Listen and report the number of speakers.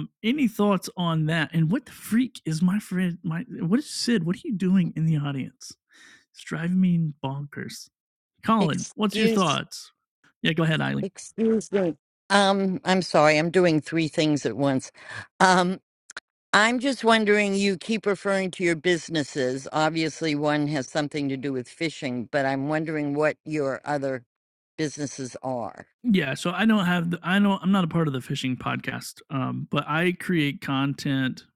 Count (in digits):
2